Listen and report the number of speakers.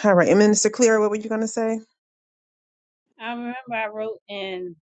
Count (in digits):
2